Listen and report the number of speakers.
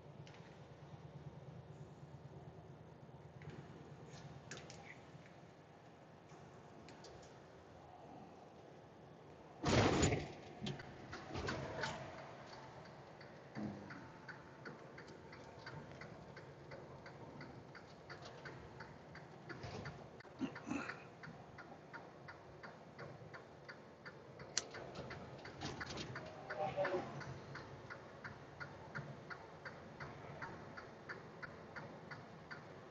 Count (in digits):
0